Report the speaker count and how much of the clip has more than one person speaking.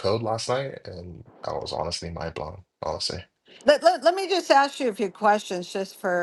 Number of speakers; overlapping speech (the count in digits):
2, no overlap